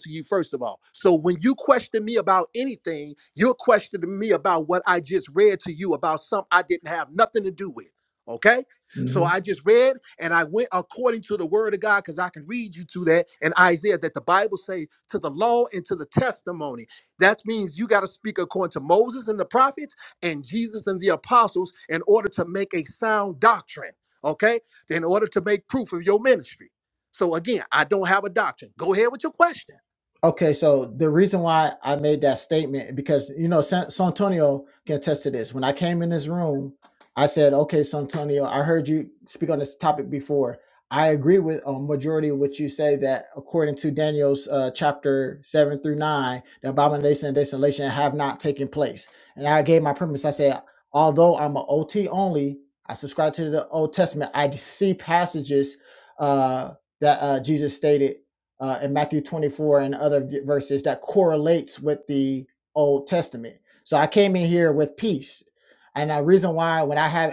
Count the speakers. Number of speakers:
2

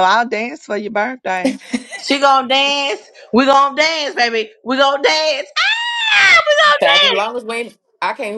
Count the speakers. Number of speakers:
3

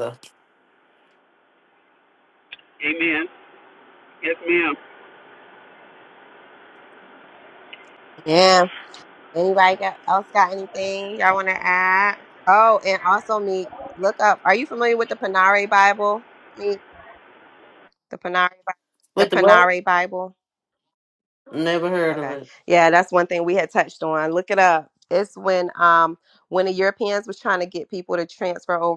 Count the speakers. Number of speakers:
3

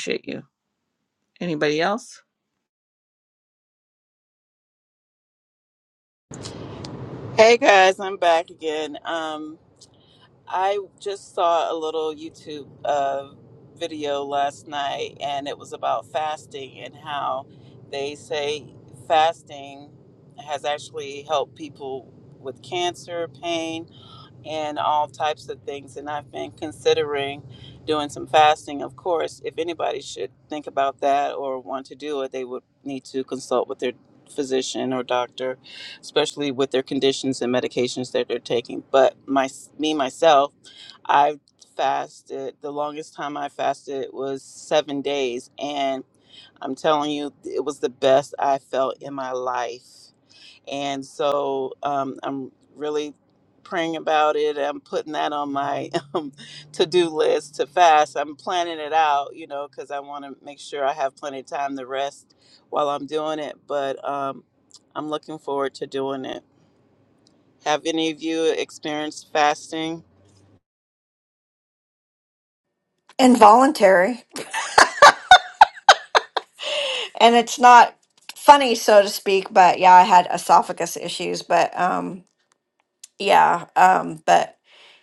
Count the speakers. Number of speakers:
3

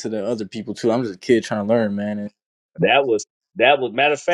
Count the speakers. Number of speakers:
2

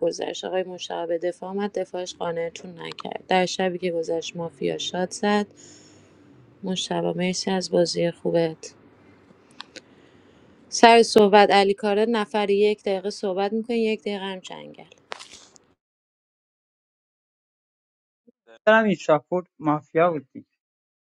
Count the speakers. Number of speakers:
2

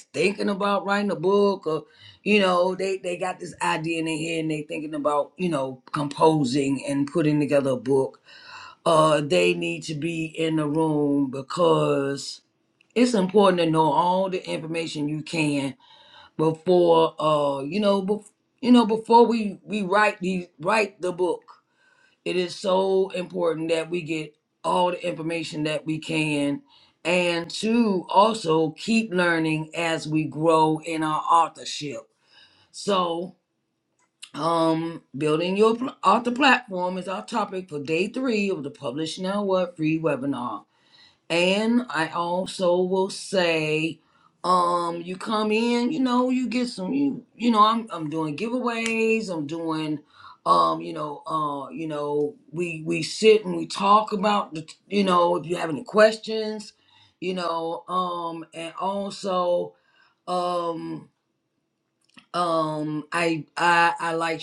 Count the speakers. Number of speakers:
1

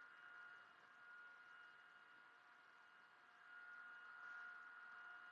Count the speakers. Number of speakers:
0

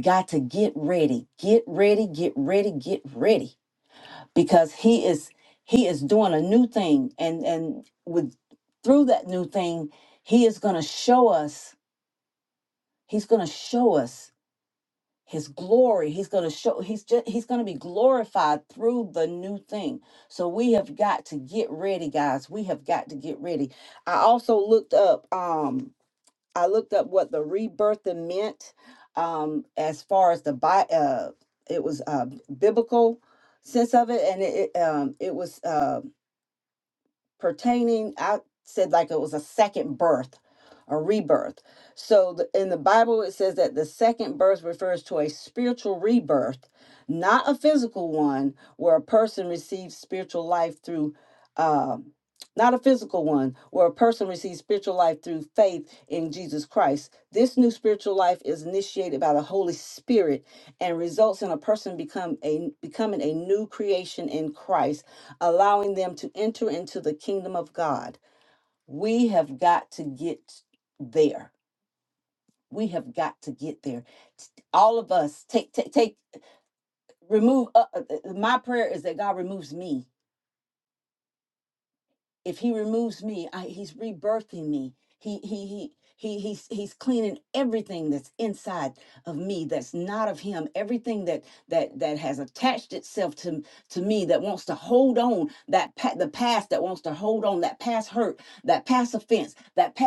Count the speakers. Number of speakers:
1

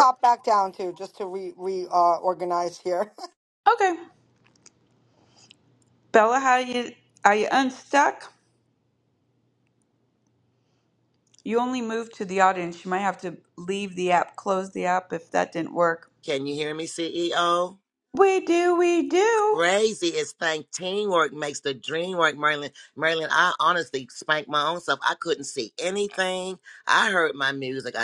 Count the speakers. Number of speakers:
3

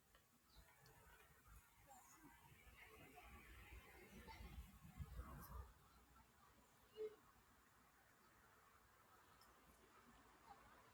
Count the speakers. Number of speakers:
0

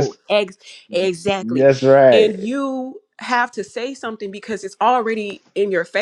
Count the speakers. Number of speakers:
2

